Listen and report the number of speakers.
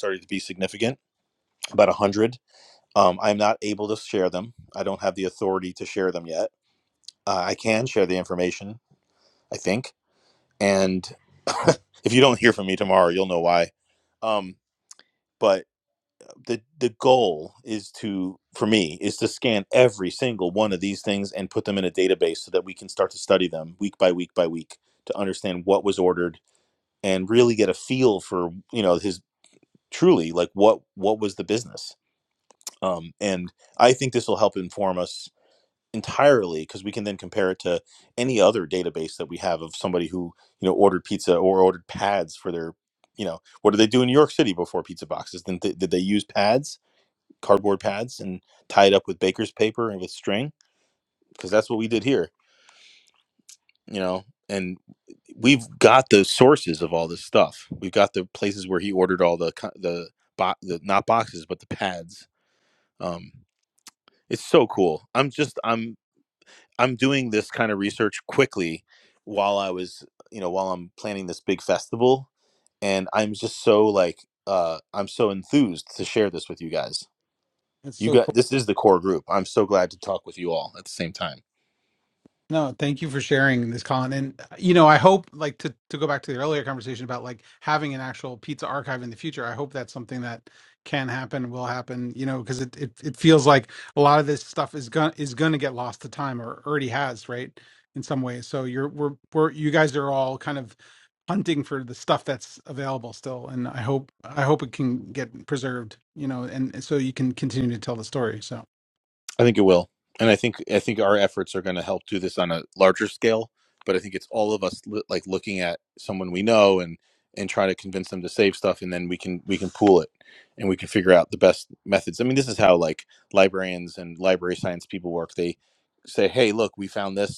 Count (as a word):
two